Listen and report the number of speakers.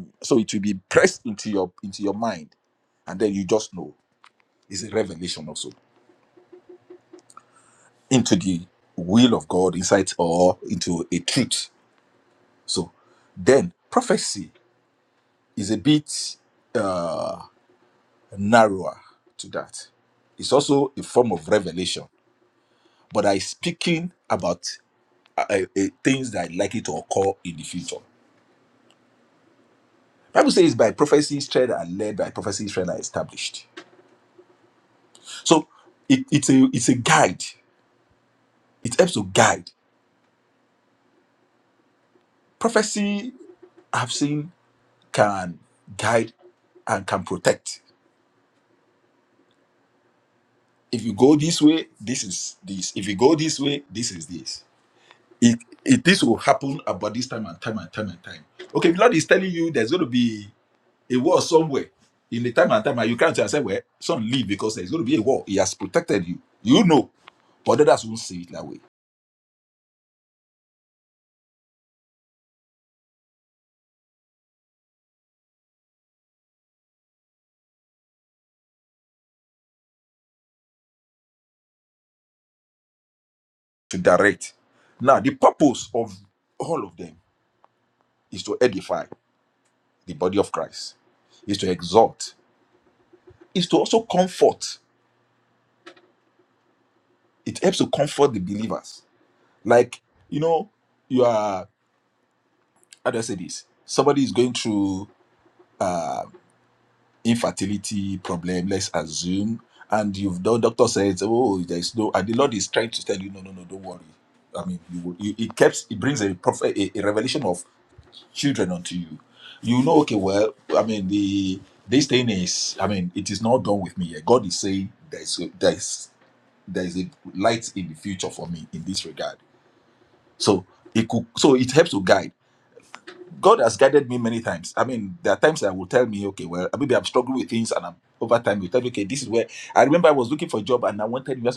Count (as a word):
one